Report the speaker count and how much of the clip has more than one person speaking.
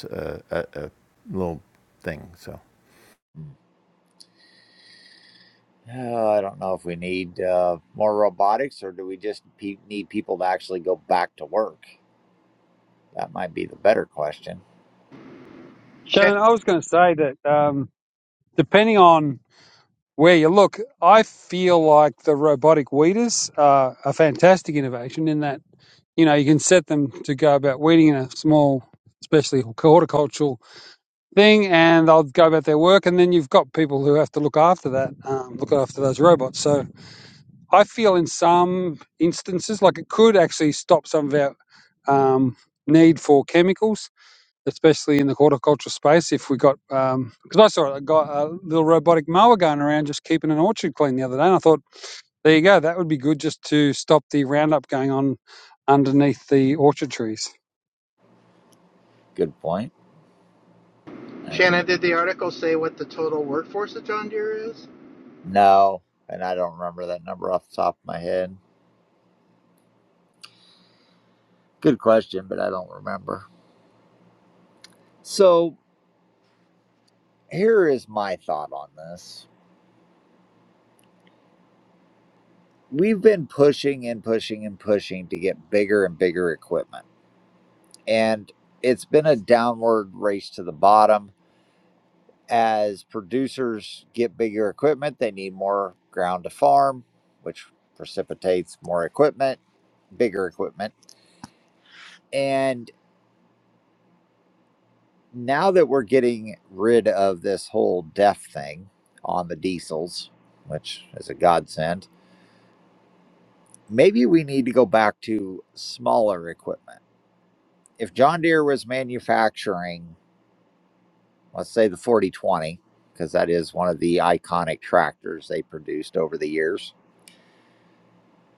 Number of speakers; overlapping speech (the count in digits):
4, under 1%